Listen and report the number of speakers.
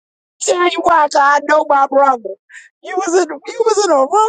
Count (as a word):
one